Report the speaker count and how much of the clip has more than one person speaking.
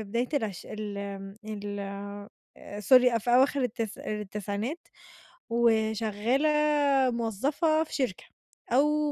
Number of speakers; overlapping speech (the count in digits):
1, no overlap